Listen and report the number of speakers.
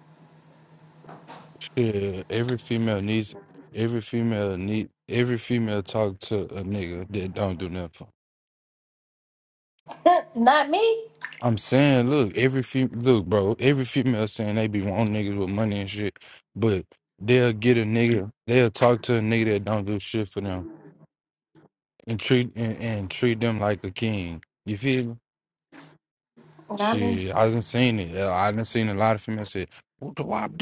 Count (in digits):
2